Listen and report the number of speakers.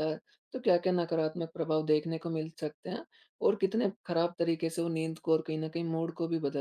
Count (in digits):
1